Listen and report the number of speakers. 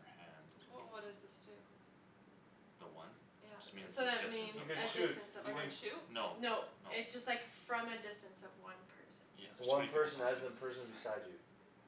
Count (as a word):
four